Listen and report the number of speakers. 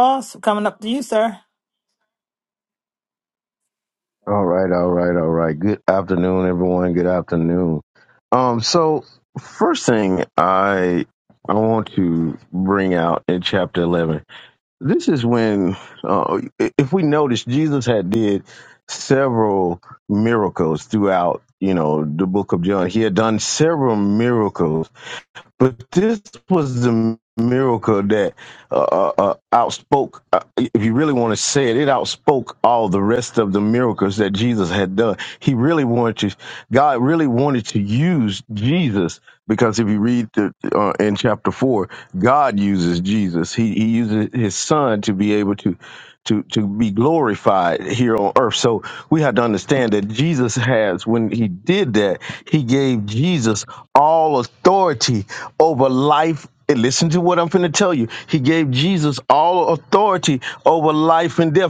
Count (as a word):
two